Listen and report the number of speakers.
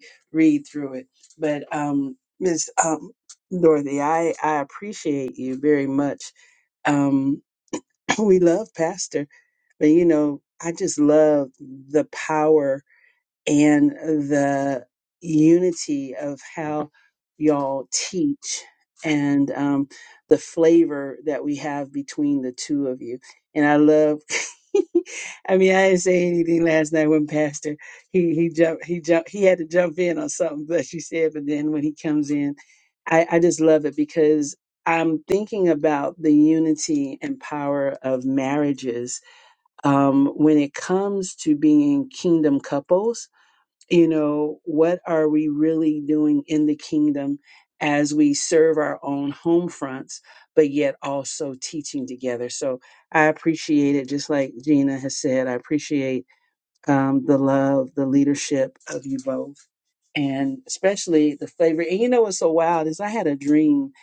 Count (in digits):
1